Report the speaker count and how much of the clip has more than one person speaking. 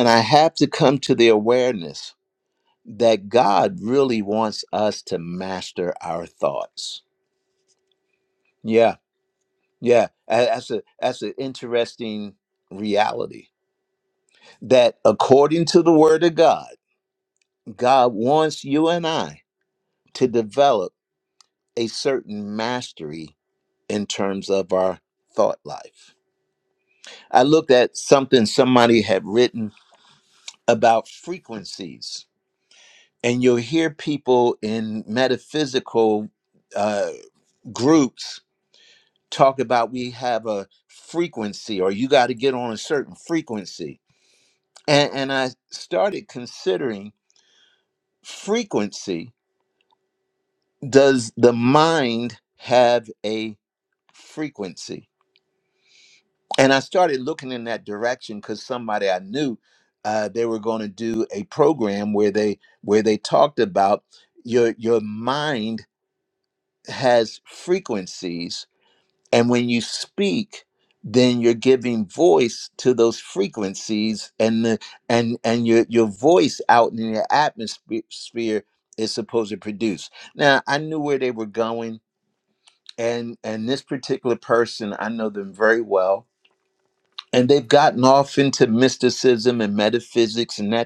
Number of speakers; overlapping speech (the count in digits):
1, no overlap